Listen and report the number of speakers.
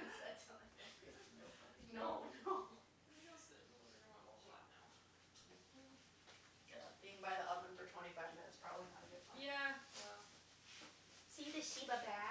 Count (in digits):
2